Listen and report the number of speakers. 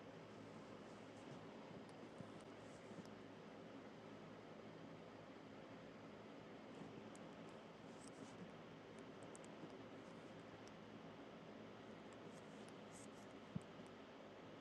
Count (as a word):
zero